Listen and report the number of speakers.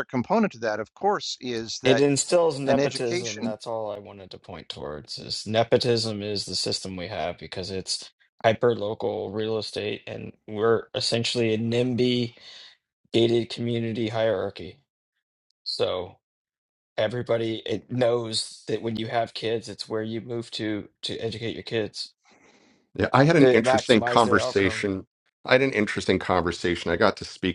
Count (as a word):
three